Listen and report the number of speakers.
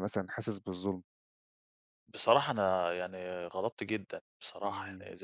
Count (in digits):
2